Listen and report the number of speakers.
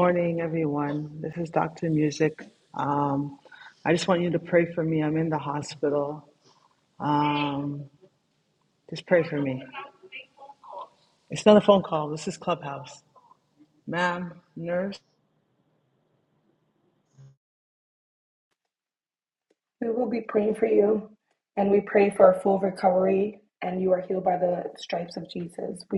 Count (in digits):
2